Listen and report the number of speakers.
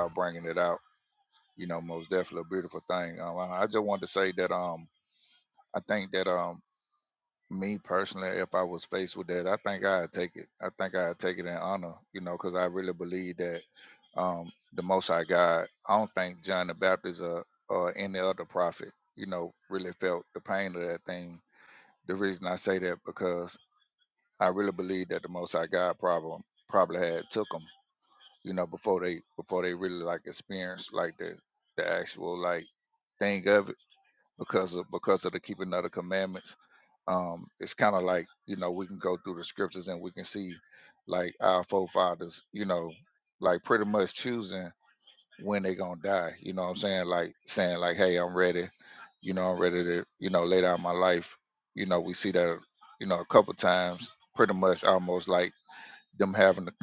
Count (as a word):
one